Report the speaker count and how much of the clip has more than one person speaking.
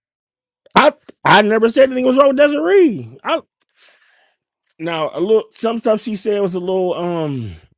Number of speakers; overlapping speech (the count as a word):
one, no overlap